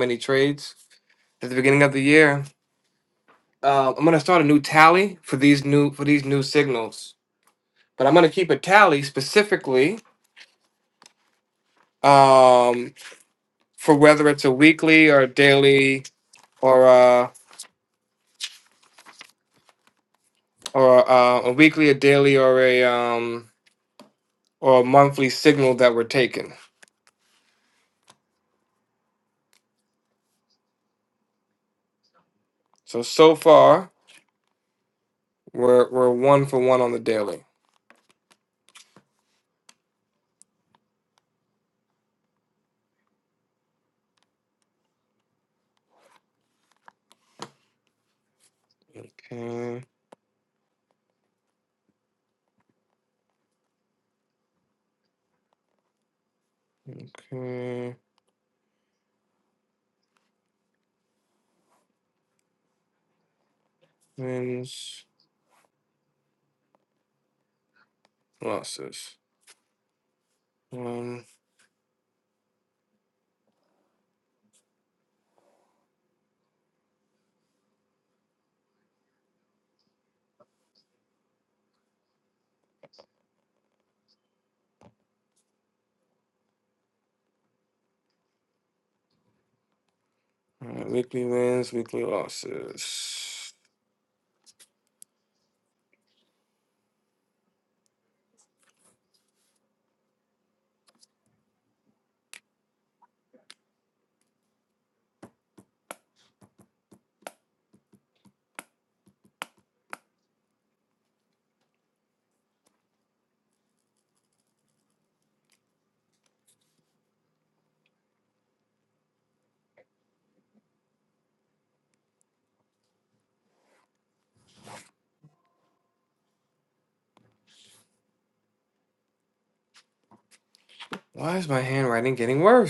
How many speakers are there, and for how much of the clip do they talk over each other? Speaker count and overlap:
1, no overlap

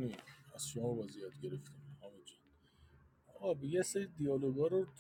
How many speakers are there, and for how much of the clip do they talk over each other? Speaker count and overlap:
1, no overlap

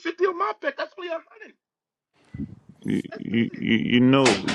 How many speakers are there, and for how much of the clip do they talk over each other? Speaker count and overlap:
2, about 3%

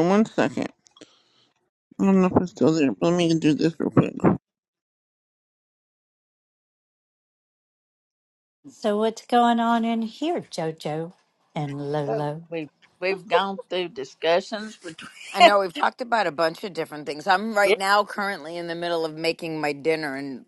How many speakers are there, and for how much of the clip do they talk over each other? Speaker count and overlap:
4, about 3%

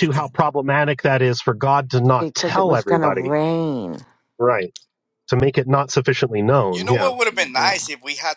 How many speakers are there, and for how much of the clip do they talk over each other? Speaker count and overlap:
3, about 21%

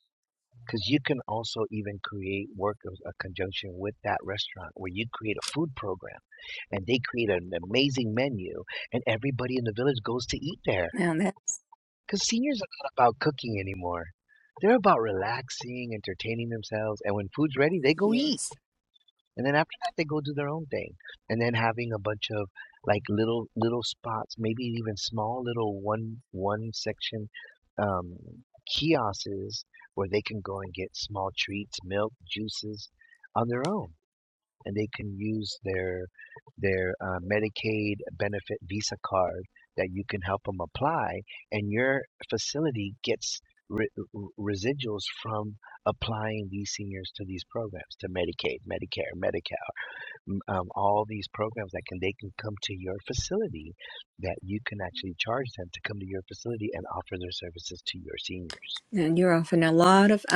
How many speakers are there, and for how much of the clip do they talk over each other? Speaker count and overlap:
2, under 1%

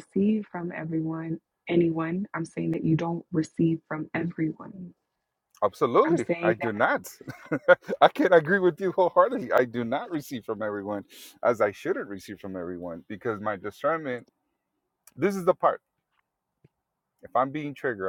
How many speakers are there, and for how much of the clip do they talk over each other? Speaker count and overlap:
2, about 3%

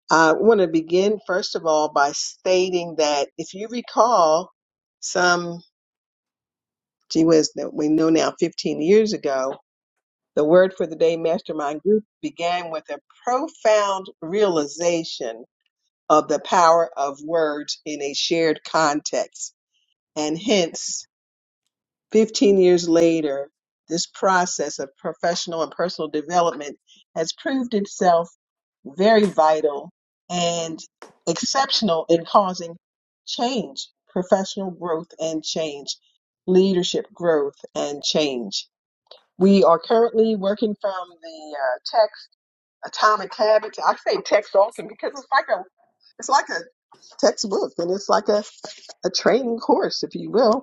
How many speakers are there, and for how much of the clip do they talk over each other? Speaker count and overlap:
1, no overlap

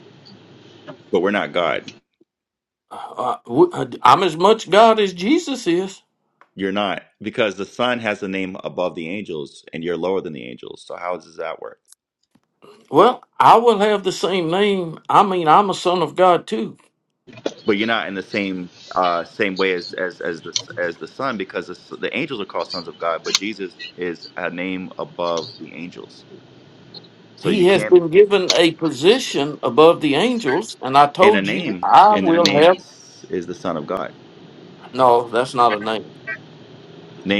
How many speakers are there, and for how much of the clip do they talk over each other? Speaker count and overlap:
2, about 6%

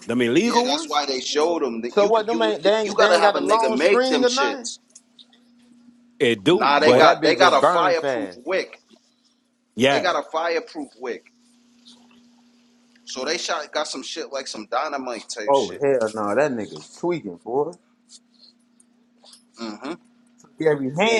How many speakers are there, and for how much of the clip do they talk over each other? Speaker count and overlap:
3, about 27%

